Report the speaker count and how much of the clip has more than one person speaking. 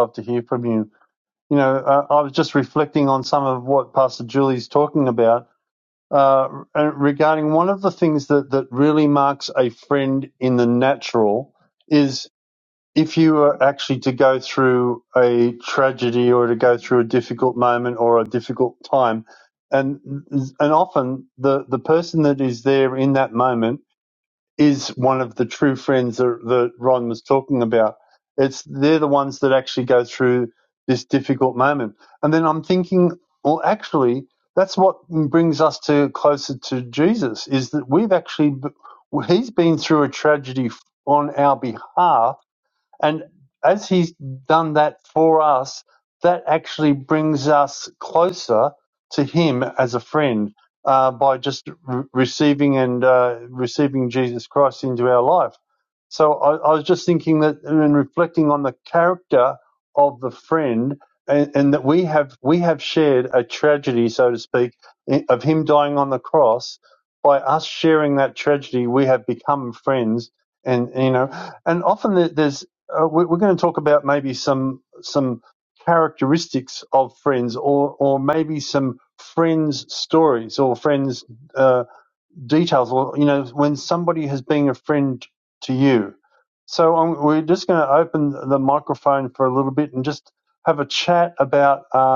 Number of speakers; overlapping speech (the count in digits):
1, no overlap